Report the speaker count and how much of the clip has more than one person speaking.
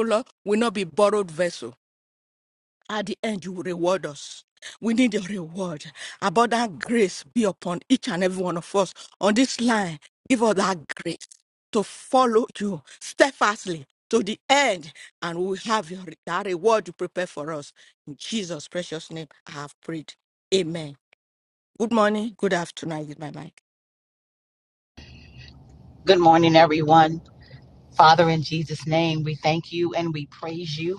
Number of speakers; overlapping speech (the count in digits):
2, no overlap